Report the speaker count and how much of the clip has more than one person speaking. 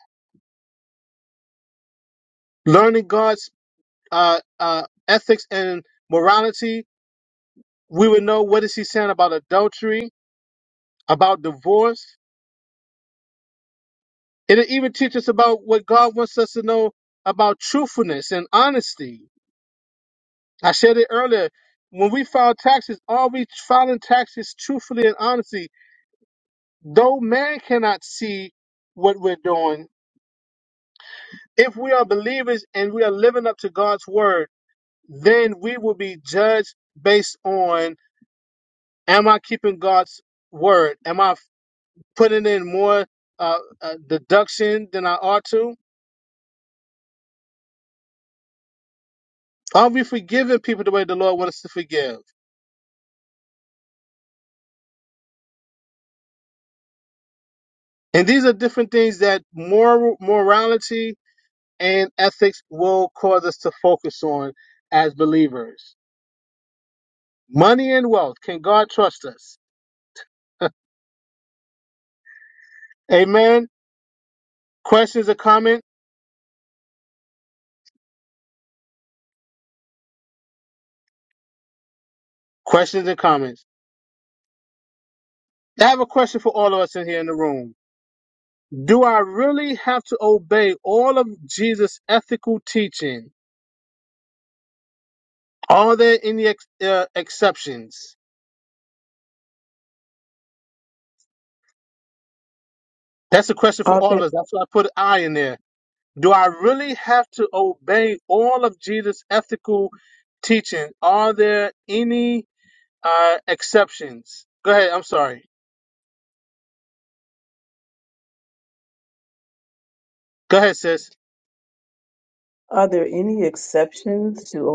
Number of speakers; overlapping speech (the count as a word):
two, under 1%